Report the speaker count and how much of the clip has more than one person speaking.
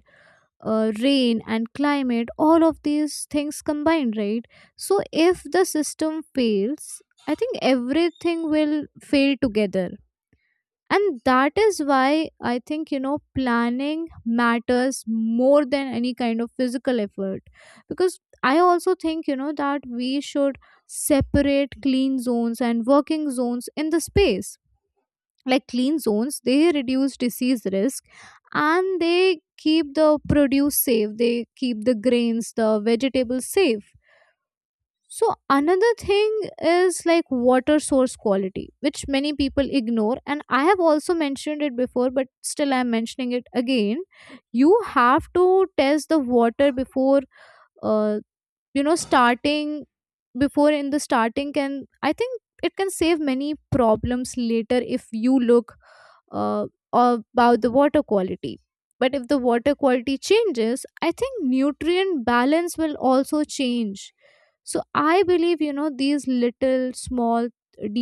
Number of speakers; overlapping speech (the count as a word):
one, no overlap